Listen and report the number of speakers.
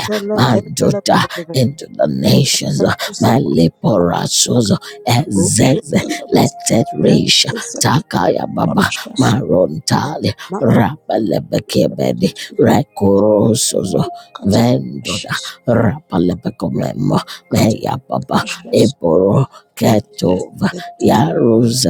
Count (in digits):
2